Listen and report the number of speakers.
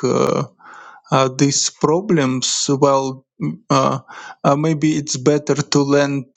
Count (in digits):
1